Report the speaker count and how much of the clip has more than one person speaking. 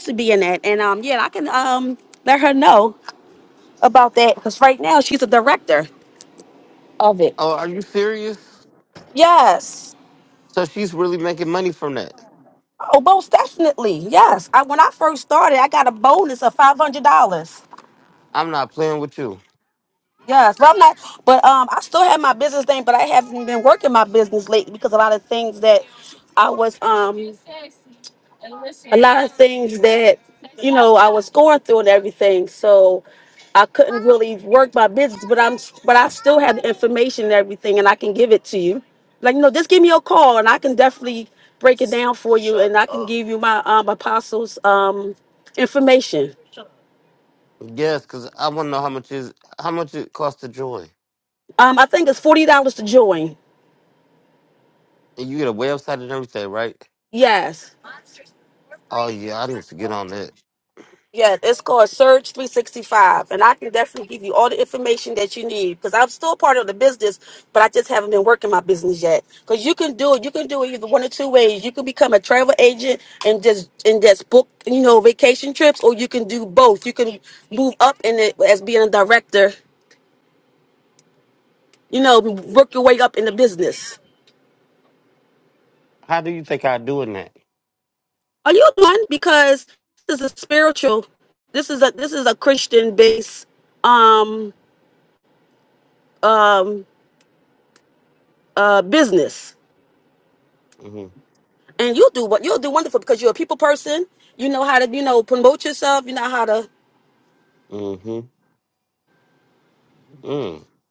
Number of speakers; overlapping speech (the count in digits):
2, no overlap